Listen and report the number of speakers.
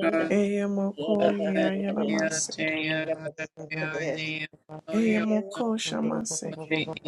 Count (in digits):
3